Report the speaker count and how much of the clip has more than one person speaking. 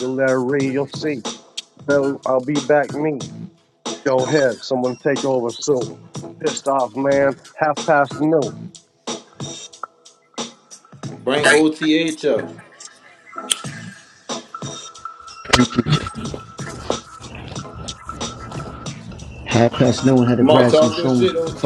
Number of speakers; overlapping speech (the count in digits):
3, about 6%